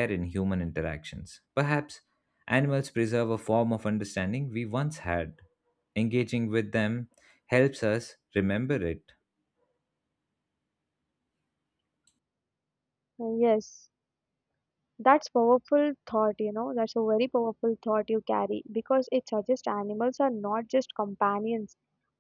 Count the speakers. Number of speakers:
two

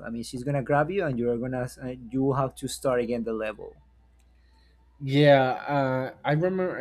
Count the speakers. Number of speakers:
two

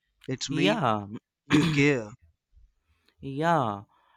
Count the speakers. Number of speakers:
two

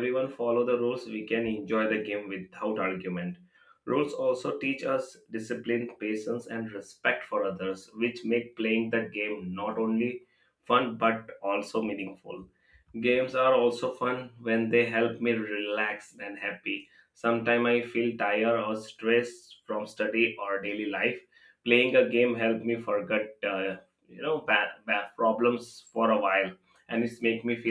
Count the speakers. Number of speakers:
one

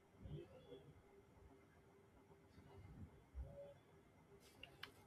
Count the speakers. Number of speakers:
zero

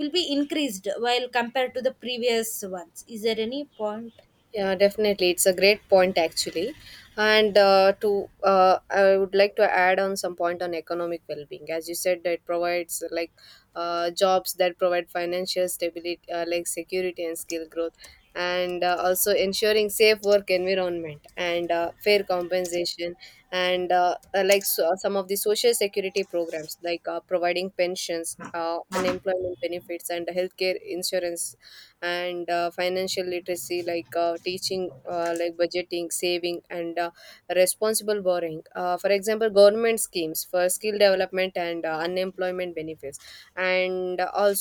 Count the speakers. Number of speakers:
two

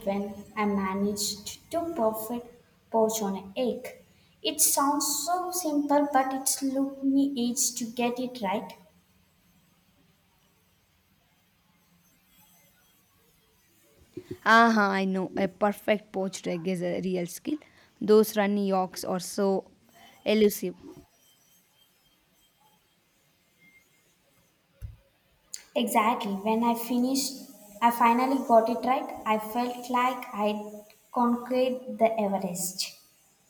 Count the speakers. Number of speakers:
two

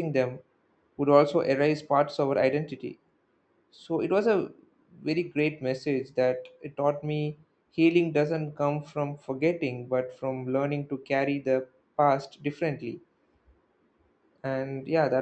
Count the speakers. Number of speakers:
one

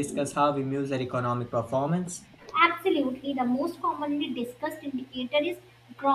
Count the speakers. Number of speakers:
two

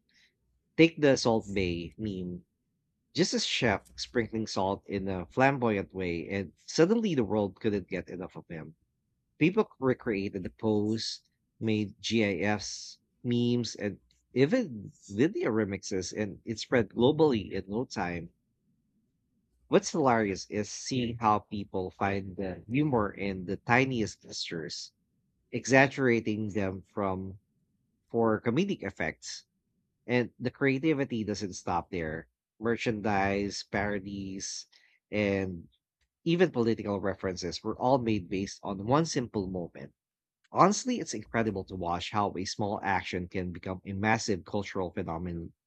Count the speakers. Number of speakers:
one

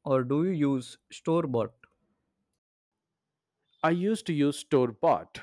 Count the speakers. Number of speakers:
two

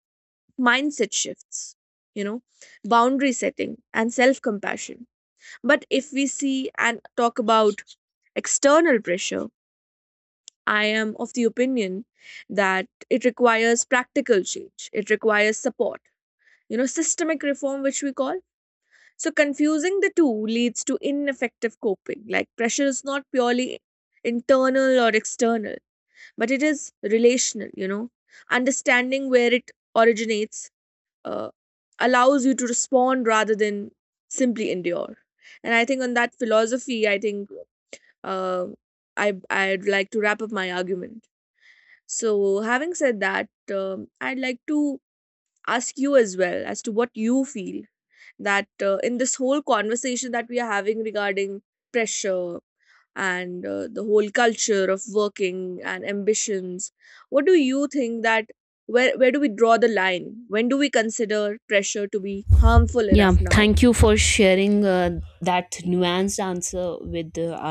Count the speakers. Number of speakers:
two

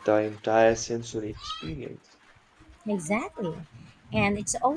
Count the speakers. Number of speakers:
two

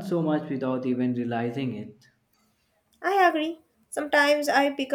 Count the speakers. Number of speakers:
two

